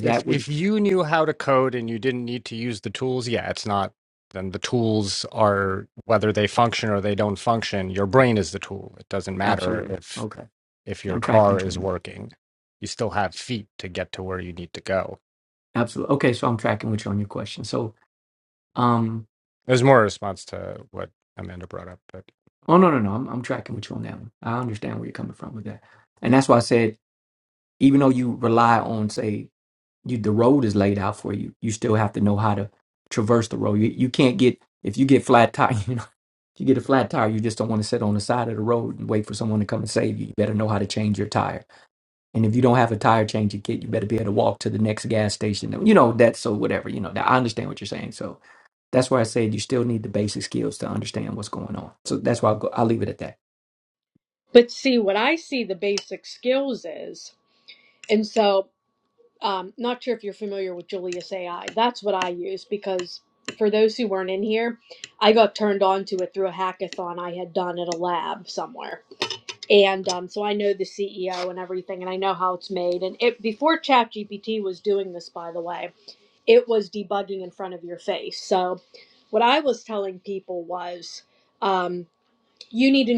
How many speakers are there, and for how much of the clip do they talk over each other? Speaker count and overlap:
three, about 2%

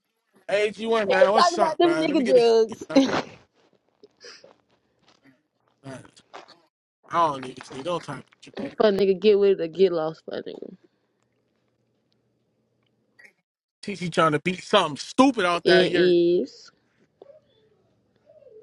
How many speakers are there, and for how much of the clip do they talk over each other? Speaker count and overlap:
two, about 10%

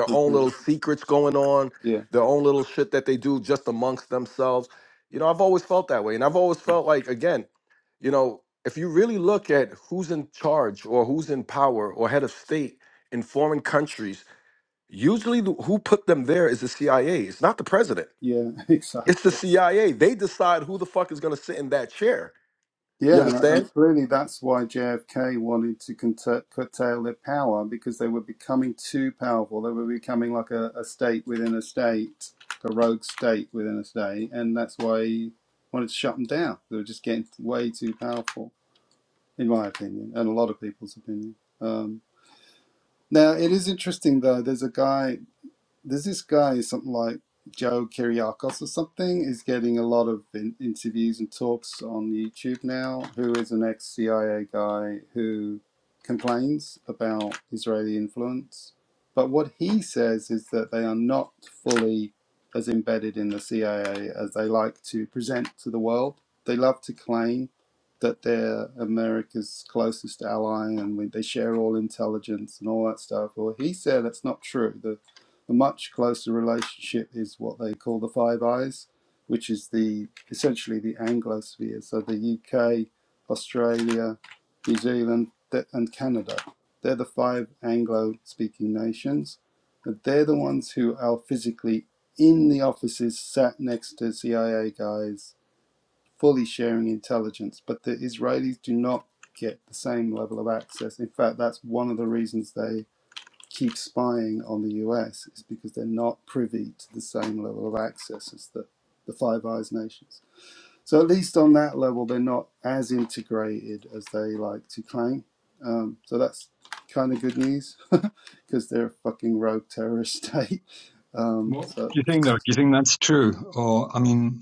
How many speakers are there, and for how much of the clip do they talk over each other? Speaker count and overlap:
three, about 1%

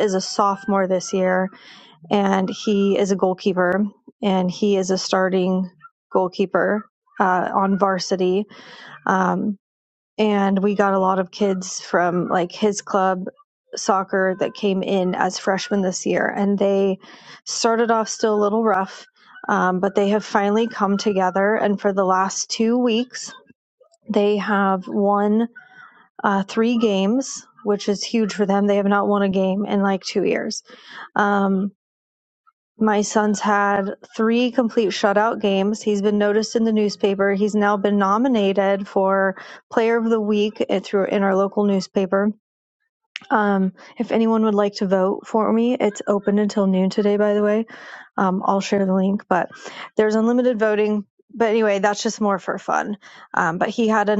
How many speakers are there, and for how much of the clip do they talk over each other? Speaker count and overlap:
one, no overlap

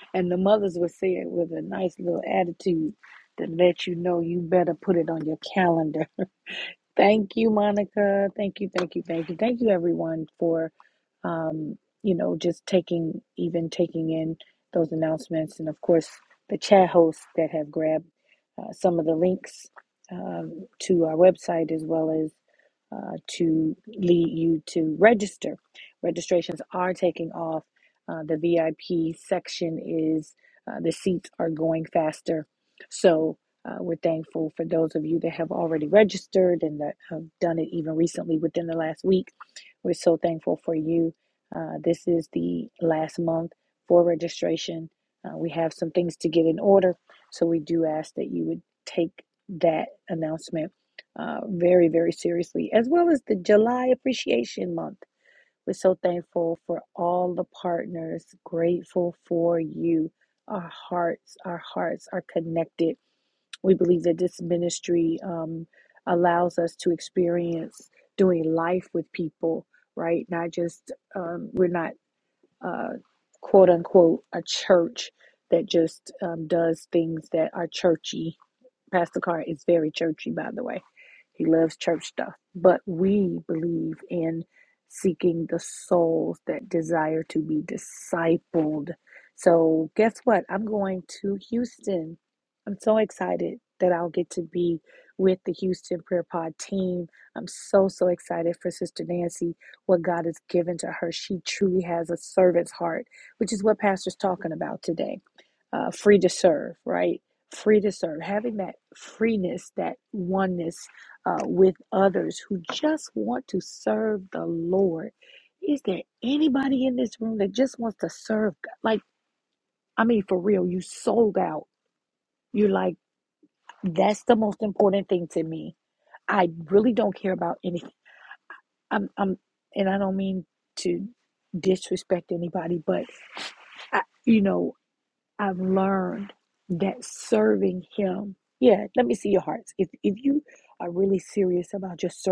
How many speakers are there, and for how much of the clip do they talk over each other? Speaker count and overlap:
one, no overlap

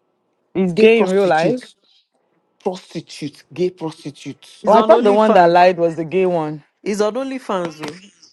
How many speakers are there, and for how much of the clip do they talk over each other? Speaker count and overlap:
three, about 22%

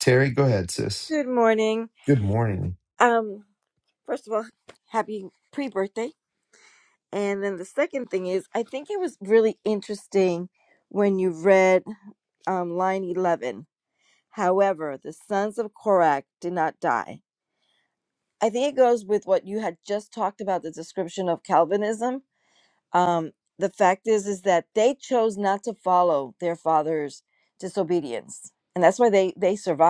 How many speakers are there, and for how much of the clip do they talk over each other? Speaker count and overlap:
two, no overlap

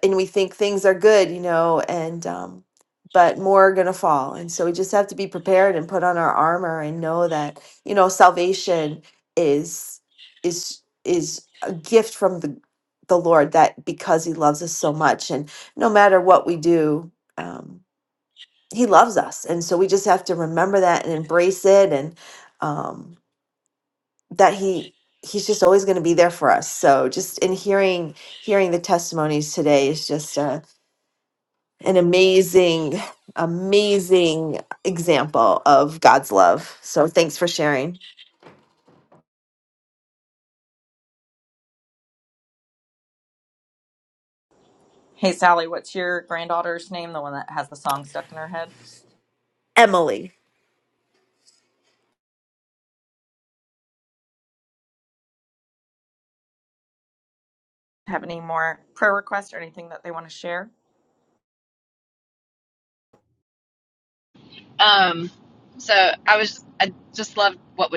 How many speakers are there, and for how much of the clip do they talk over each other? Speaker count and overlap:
three, no overlap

